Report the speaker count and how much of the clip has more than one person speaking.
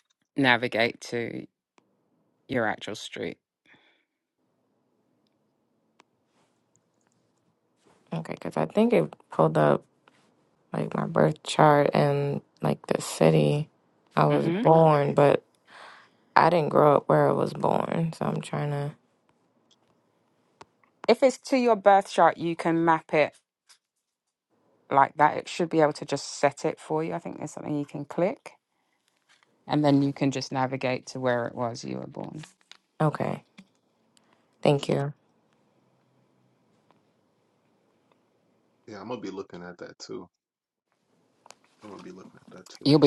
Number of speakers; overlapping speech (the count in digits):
3, about 1%